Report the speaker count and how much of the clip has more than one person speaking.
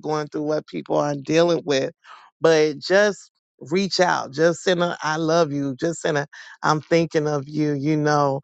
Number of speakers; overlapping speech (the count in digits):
1, no overlap